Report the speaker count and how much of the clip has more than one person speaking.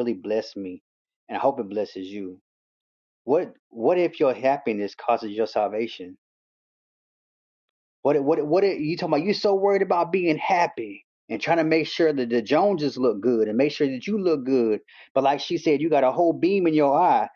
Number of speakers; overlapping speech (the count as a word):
one, no overlap